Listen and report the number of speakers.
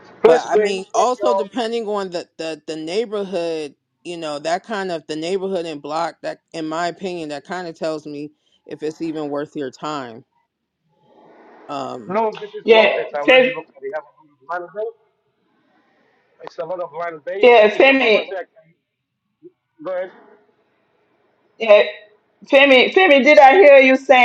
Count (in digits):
3